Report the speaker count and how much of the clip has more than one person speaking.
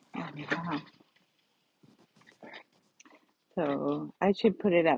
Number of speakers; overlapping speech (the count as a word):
one, no overlap